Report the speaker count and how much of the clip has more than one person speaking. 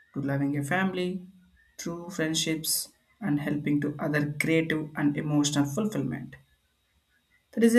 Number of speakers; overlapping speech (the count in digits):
1, no overlap